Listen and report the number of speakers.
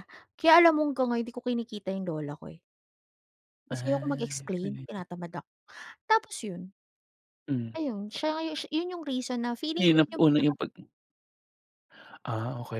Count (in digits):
2